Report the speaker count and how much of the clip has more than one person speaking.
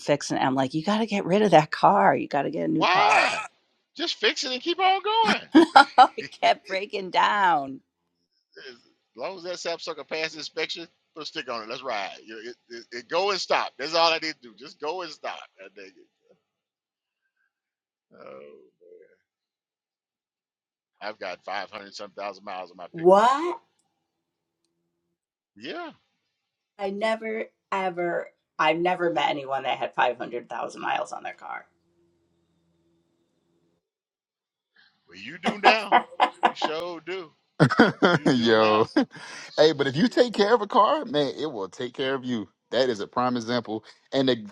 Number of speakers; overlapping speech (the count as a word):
three, about 5%